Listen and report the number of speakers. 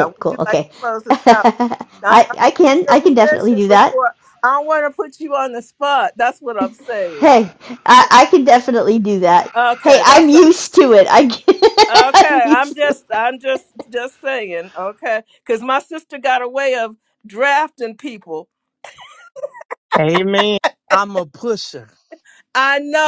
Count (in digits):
3